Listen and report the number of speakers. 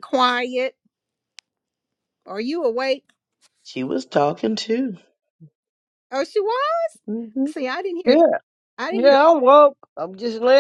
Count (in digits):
3